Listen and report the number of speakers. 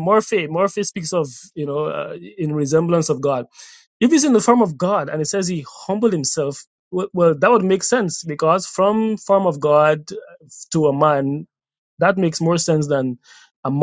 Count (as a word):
one